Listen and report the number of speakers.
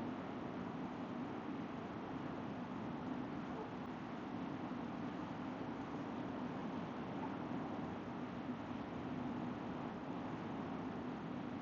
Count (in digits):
0